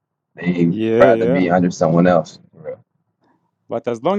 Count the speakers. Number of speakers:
2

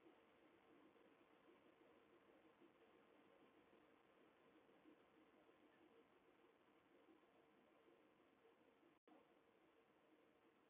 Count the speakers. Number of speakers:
0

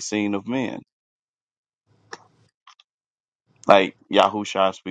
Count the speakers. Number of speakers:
1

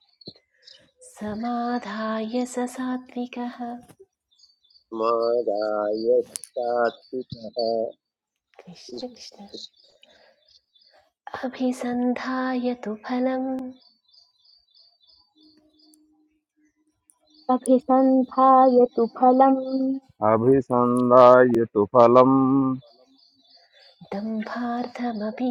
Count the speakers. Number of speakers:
4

